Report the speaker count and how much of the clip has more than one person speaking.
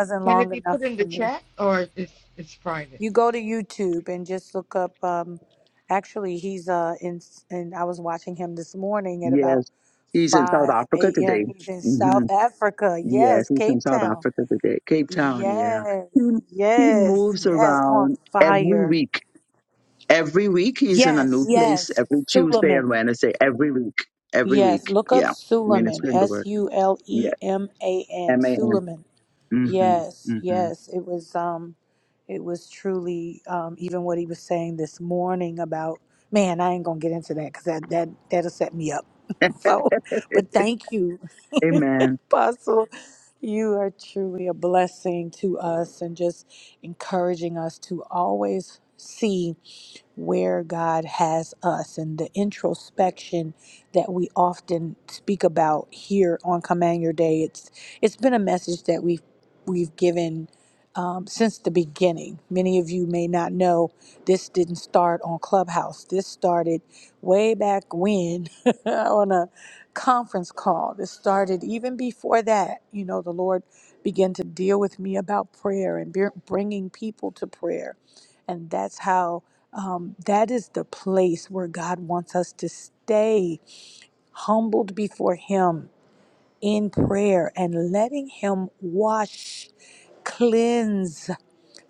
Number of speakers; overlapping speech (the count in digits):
3, about 13%